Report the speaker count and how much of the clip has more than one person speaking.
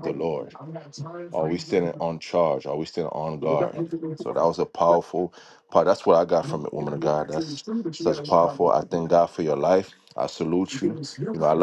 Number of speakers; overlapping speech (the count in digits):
2, about 36%